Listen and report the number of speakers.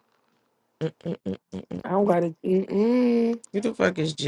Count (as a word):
two